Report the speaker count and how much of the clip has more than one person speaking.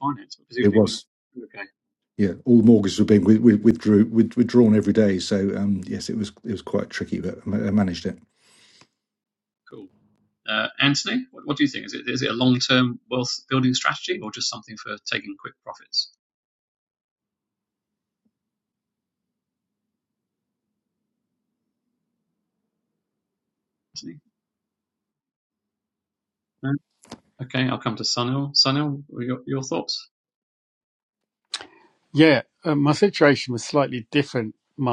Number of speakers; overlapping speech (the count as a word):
three, about 1%